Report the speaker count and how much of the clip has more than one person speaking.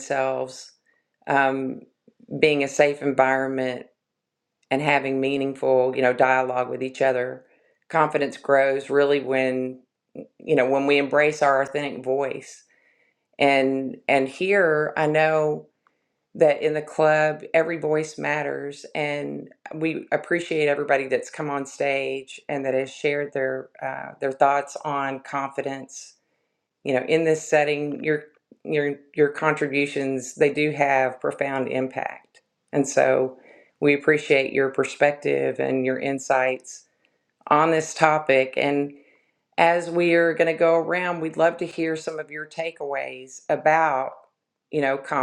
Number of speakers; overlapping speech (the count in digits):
1, no overlap